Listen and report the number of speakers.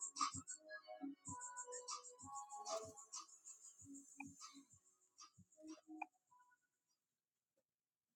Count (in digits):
0